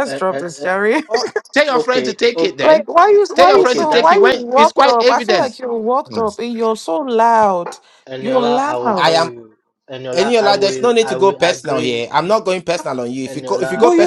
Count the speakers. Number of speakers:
3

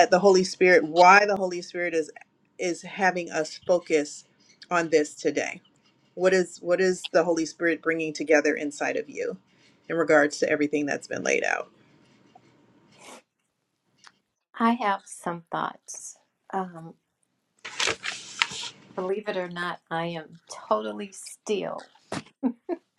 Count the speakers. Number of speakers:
2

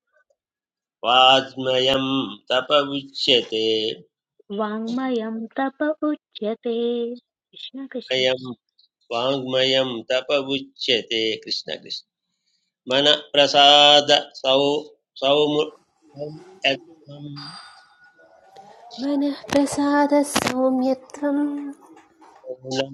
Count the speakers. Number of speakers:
3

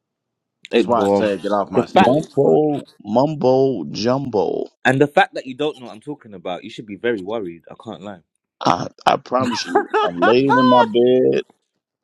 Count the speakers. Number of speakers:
3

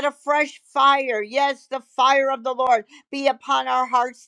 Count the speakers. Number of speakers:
1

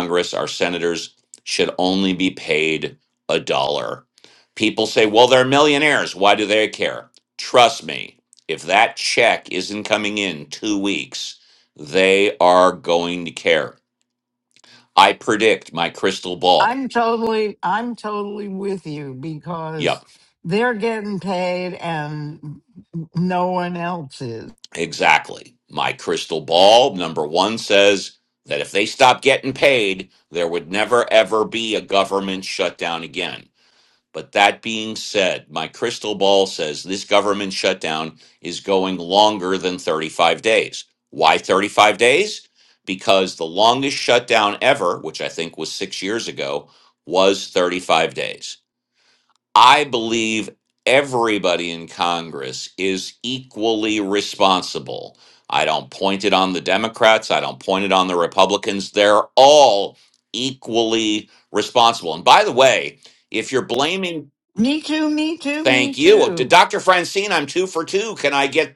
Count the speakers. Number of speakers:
2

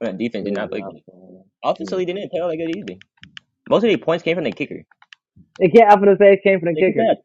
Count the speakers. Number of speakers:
2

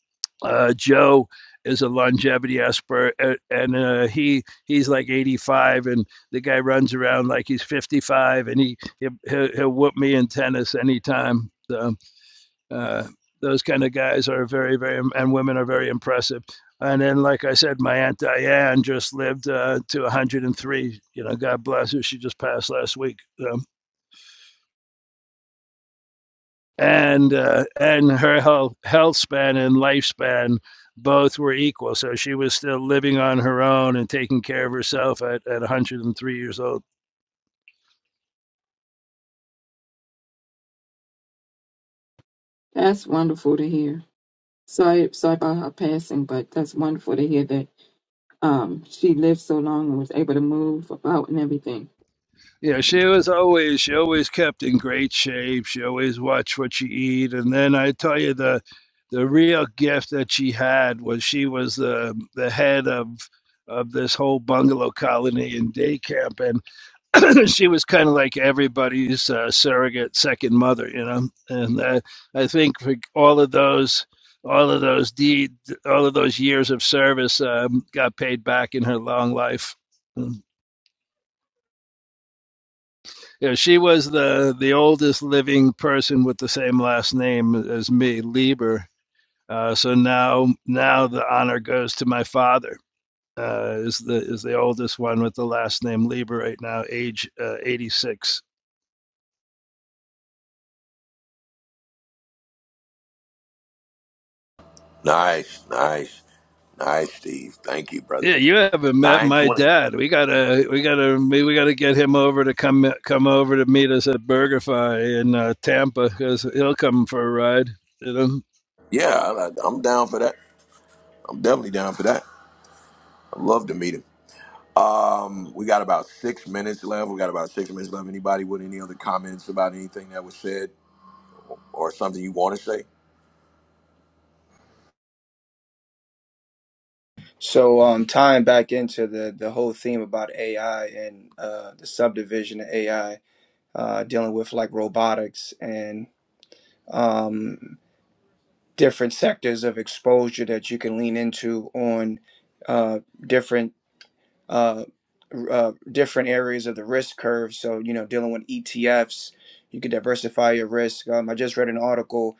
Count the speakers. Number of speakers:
4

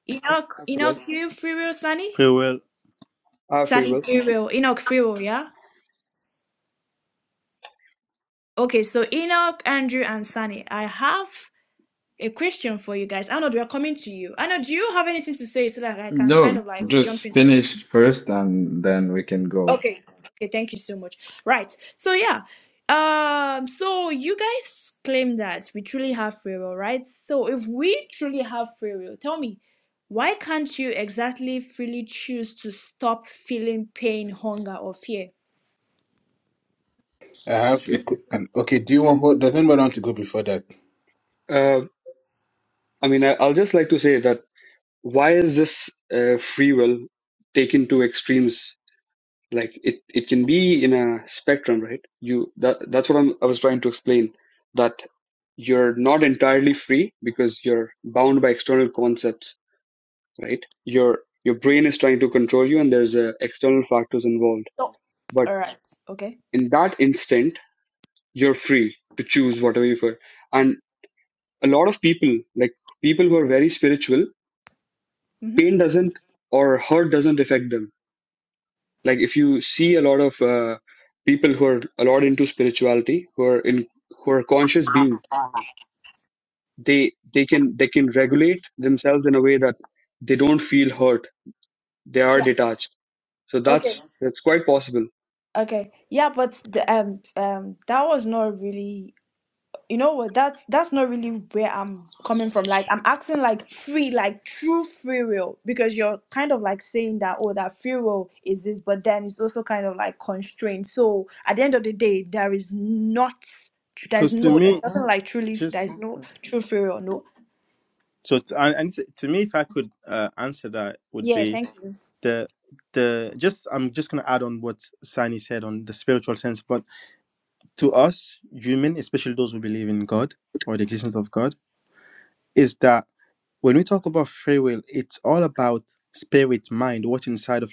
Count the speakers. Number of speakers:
5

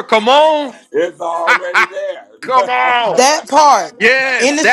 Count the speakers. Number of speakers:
3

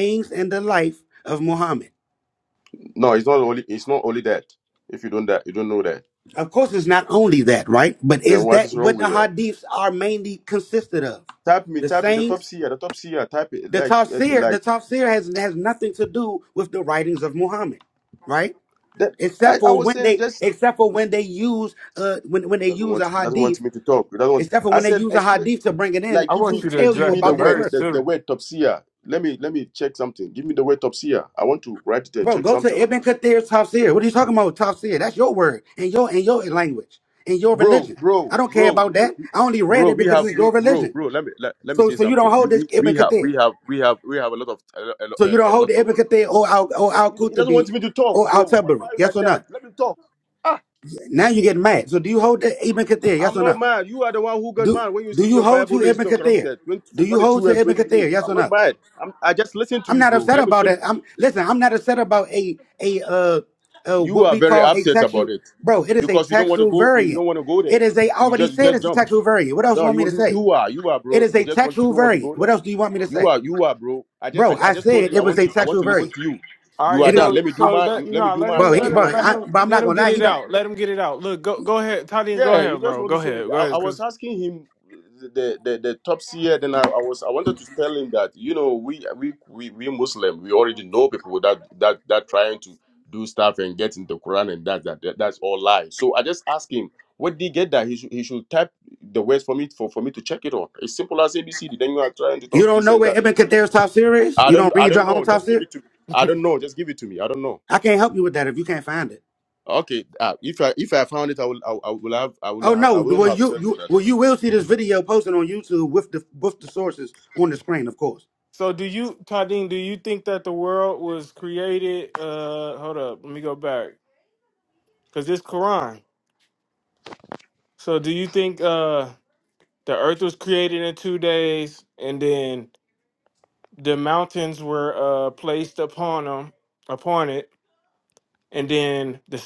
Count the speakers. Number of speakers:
3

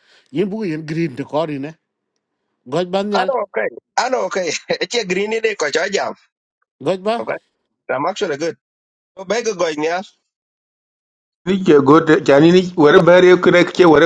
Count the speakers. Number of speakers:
3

